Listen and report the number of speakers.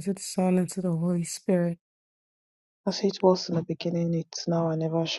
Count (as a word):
two